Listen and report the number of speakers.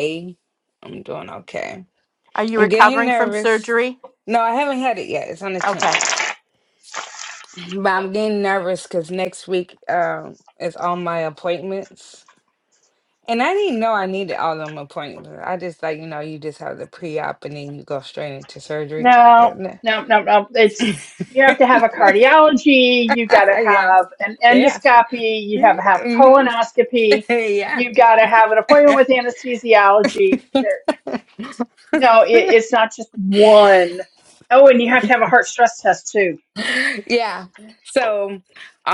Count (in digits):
3